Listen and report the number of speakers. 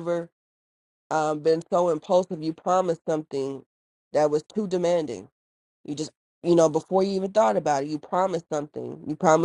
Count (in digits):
1